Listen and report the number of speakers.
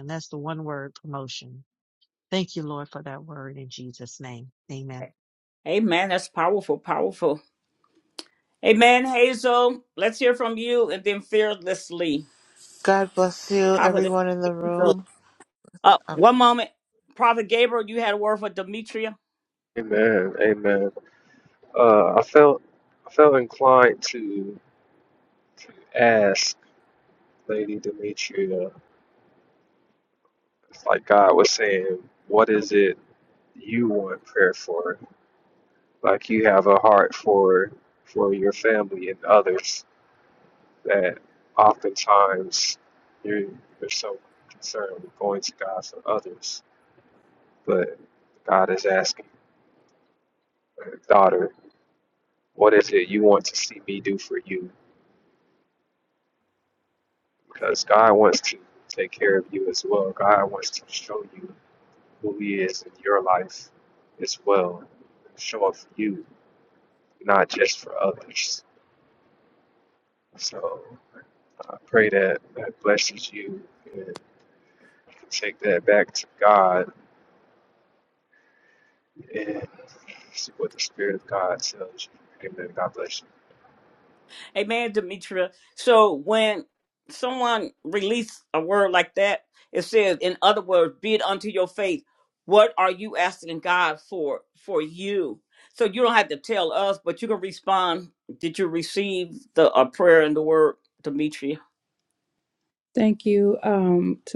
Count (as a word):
five